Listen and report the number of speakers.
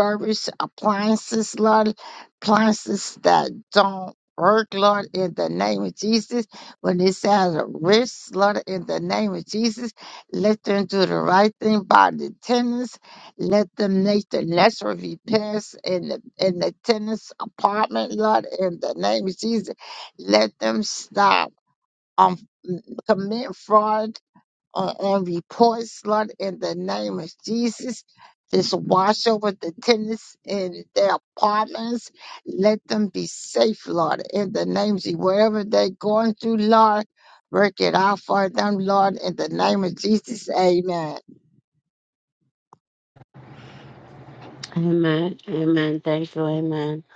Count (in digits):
2